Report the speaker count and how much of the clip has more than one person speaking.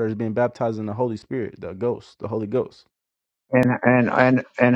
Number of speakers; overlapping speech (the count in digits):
2, no overlap